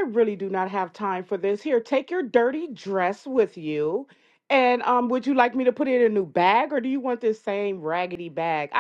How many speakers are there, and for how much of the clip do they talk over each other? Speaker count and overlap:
one, no overlap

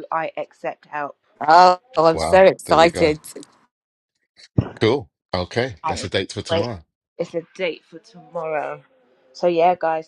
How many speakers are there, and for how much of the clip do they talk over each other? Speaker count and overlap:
three, about 14%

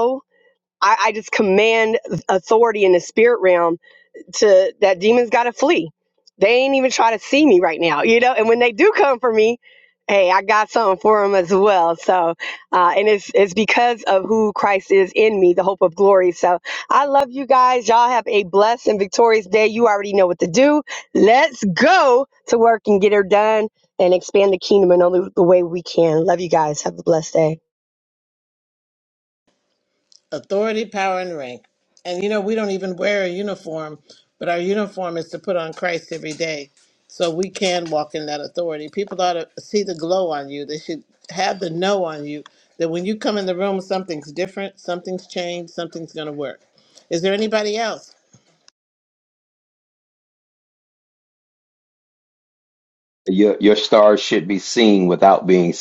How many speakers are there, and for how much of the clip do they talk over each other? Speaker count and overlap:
three, no overlap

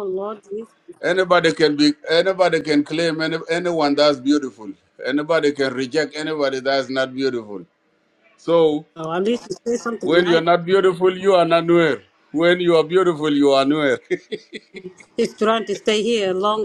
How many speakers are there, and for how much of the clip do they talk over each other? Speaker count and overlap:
two, about 2%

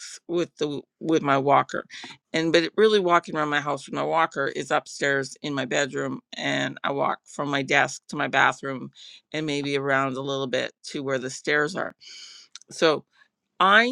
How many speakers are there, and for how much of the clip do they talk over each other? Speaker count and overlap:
one, no overlap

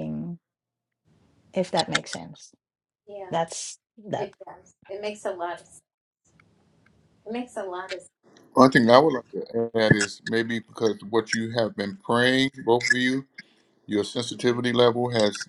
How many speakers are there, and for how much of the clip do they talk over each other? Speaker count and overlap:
three, about 3%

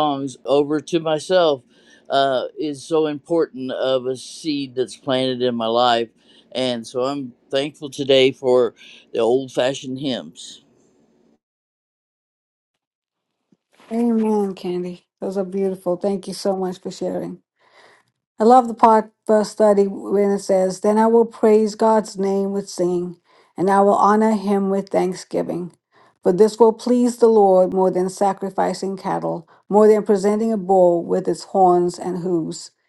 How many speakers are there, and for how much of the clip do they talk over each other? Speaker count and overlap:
two, no overlap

